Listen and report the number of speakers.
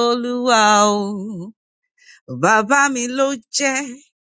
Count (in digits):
1